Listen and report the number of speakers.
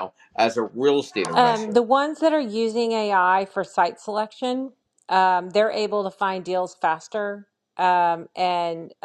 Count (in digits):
2